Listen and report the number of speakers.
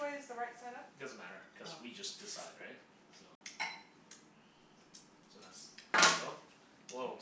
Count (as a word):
two